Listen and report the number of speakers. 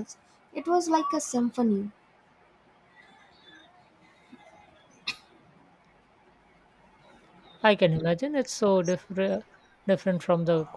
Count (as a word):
two